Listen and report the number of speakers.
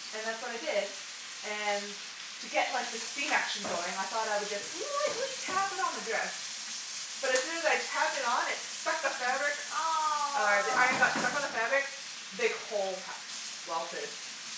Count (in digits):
2